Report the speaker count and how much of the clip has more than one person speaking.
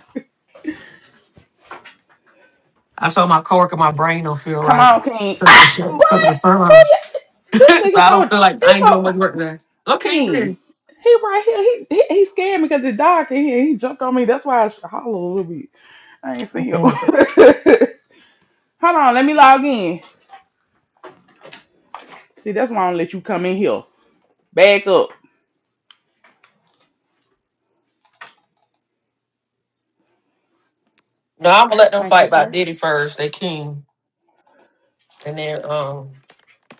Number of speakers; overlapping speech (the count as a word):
two, about 11%